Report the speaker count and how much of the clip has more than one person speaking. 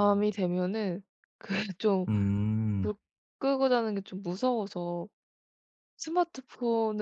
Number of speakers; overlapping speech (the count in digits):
2, about 4%